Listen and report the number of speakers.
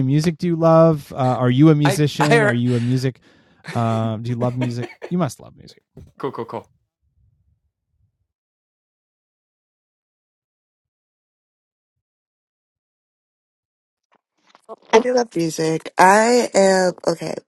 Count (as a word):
three